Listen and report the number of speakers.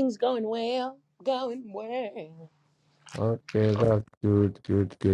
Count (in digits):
2